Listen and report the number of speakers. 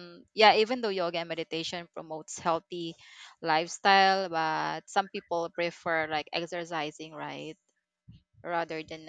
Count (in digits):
1